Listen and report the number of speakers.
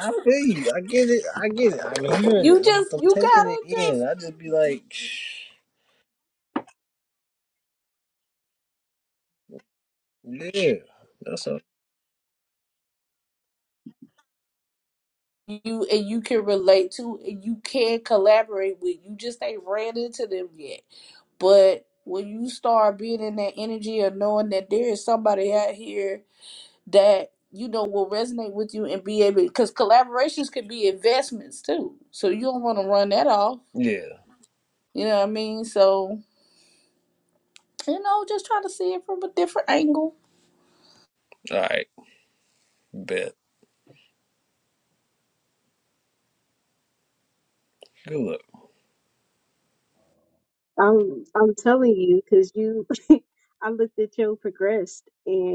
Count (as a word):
three